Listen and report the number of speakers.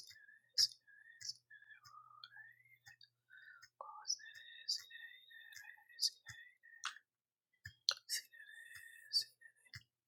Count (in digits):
0